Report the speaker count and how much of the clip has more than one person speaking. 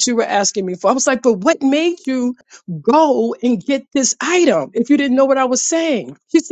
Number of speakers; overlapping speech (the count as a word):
one, no overlap